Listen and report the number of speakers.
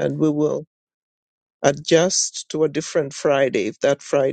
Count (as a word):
one